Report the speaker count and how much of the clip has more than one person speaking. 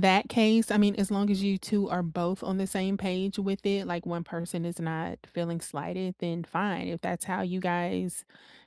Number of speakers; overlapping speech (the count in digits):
1, no overlap